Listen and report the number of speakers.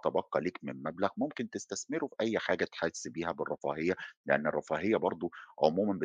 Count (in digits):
1